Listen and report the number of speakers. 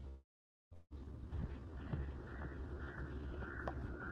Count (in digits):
0